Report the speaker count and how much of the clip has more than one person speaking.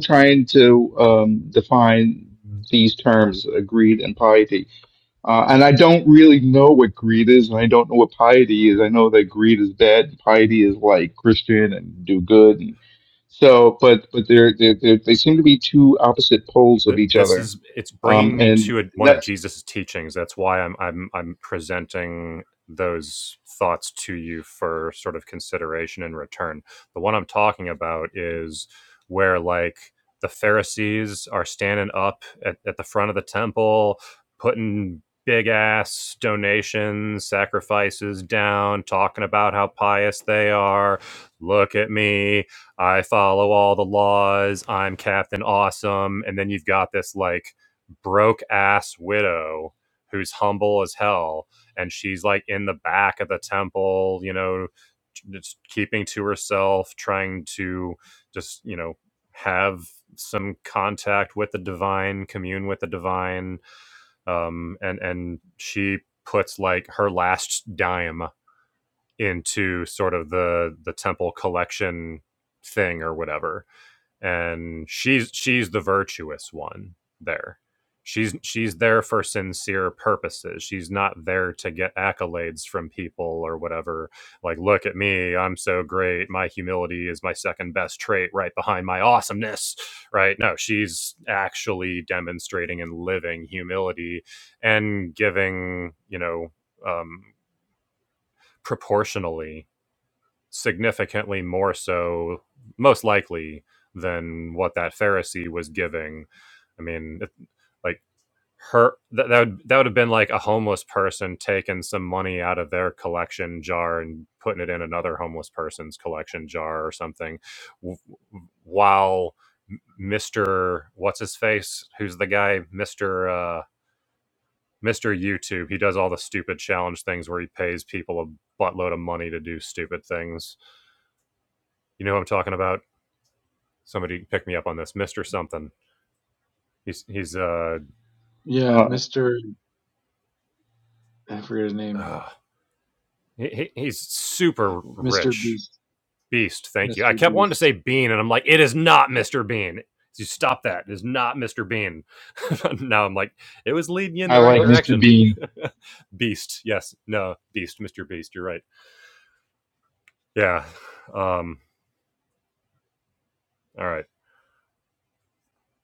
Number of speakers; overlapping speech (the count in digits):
3, about 3%